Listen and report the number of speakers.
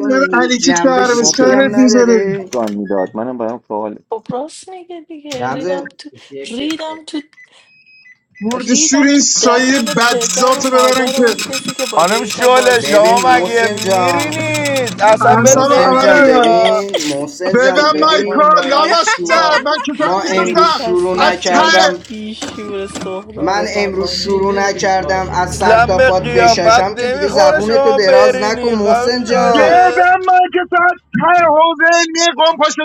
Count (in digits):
5